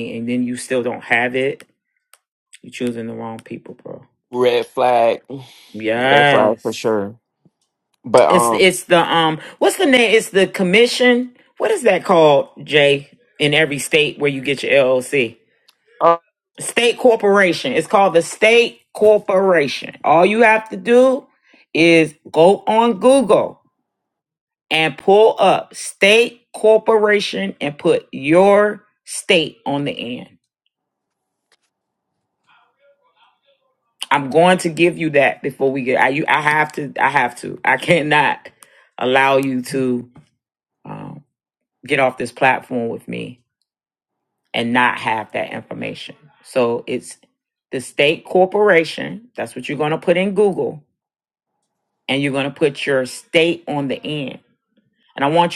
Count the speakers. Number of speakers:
two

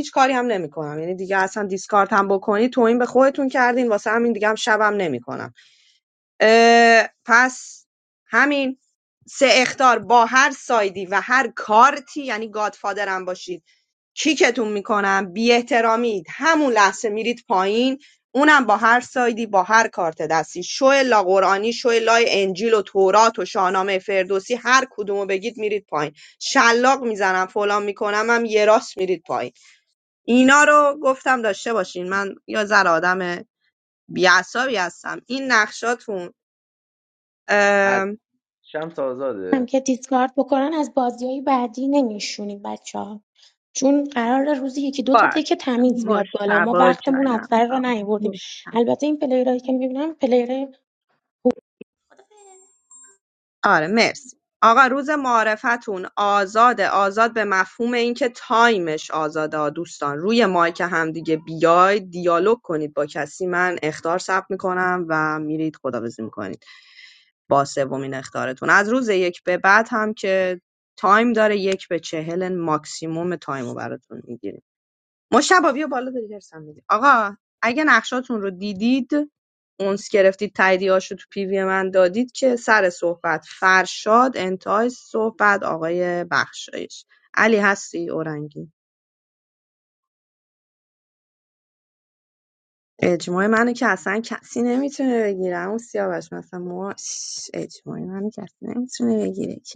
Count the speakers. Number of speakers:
three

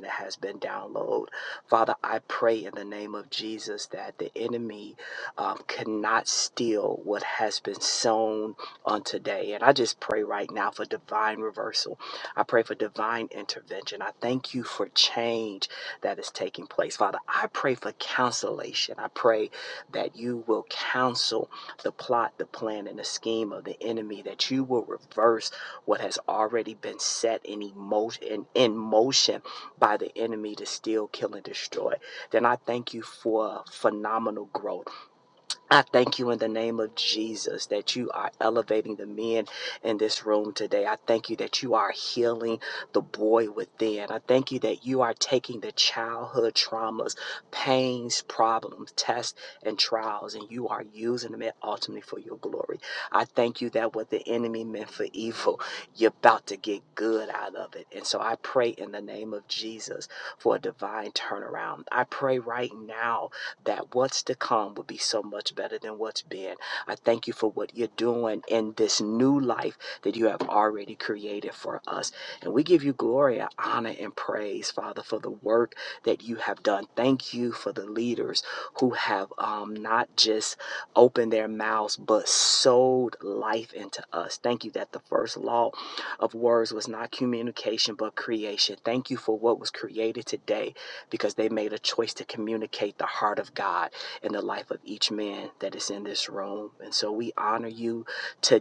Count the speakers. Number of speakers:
one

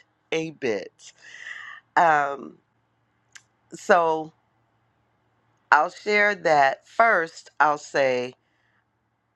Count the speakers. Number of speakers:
one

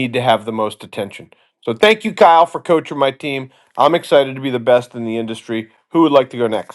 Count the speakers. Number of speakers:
one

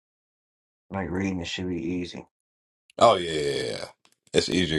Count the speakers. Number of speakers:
two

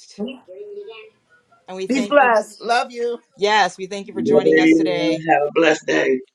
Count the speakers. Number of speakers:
three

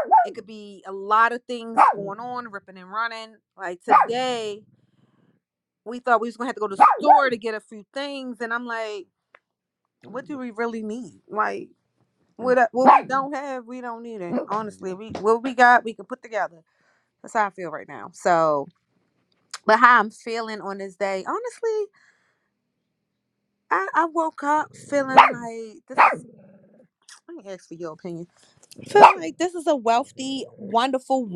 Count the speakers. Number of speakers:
one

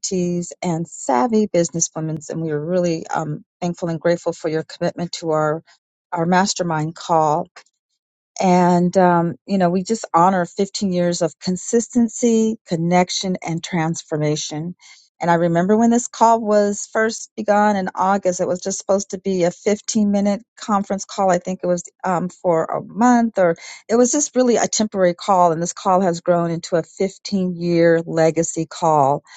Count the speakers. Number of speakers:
one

